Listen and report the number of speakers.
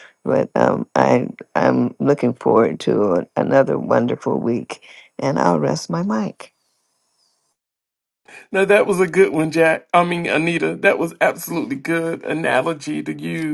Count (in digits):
2